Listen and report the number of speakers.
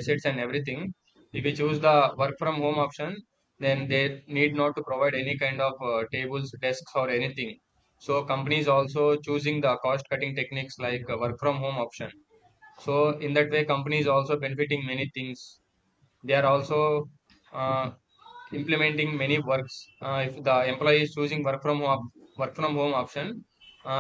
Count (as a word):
one